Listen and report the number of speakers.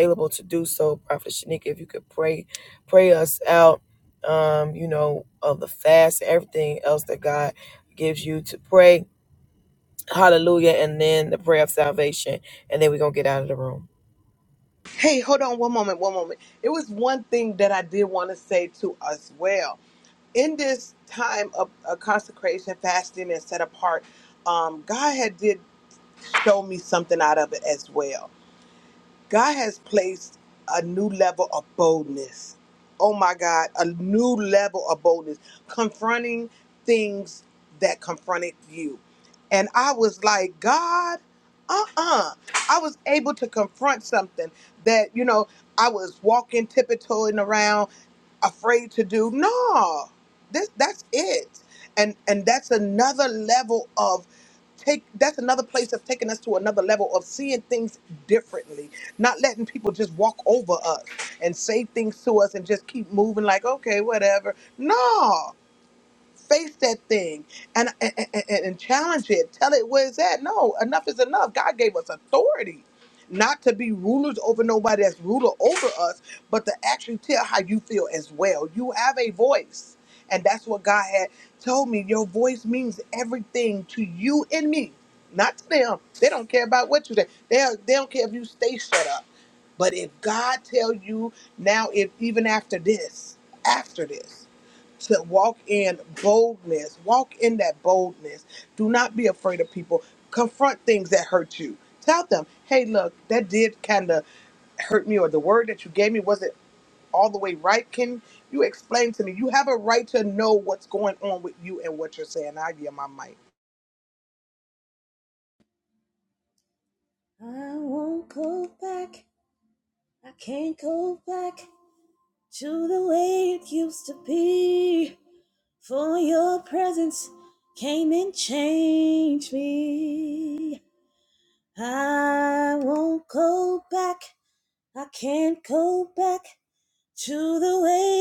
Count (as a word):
three